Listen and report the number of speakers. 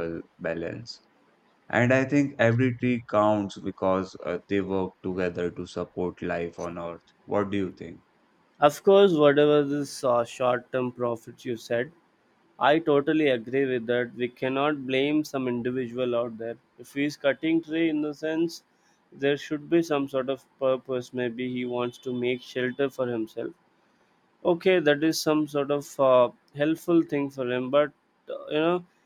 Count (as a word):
two